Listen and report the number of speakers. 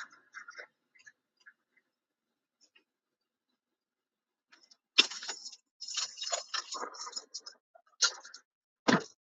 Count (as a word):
zero